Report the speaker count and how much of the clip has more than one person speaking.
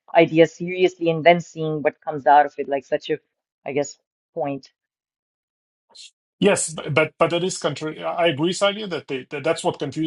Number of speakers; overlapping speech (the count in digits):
2, no overlap